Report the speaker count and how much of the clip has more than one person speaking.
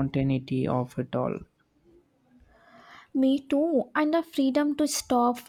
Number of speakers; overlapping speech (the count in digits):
2, no overlap